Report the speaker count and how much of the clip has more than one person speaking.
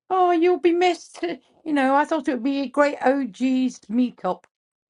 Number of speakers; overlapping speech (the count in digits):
1, no overlap